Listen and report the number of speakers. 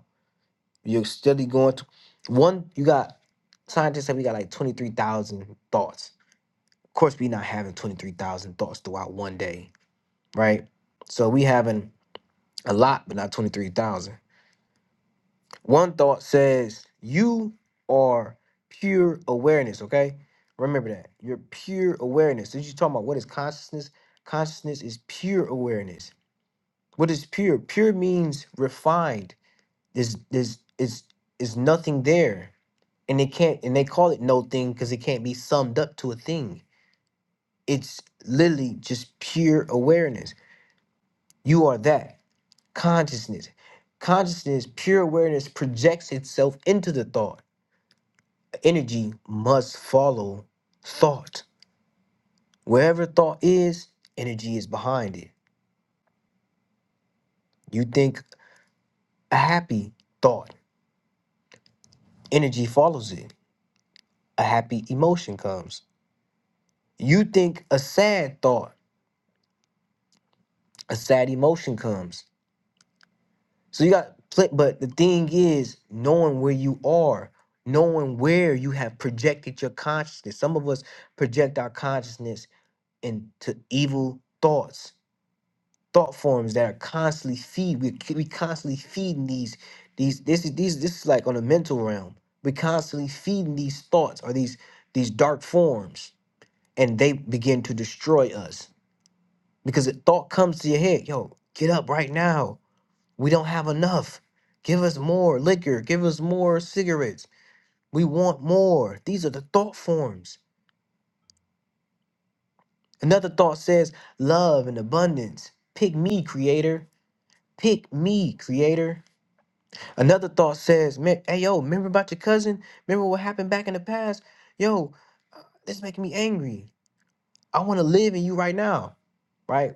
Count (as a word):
one